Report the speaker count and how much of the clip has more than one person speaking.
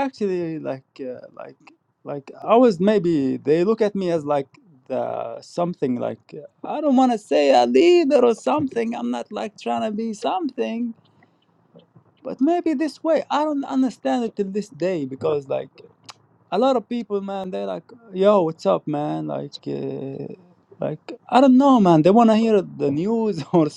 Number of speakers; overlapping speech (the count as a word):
one, no overlap